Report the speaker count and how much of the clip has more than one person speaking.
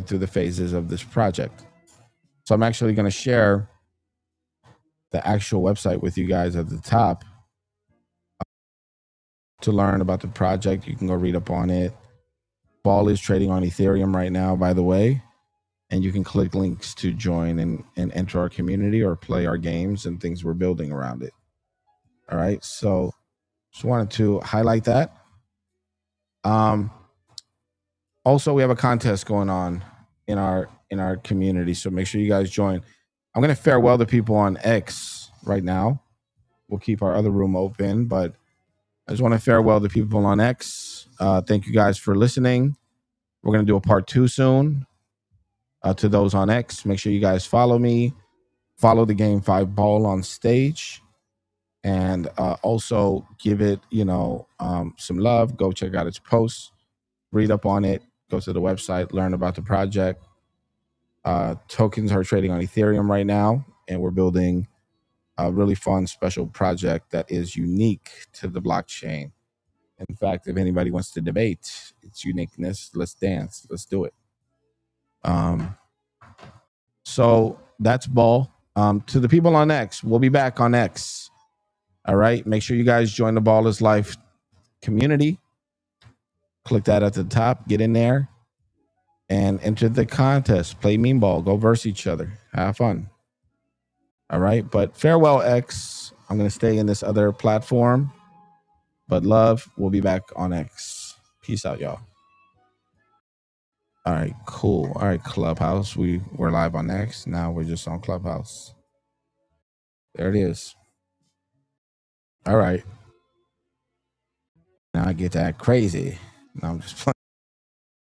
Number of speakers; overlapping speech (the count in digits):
1, no overlap